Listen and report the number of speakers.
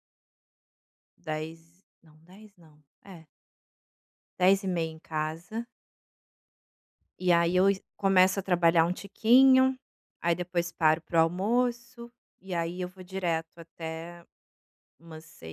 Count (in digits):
1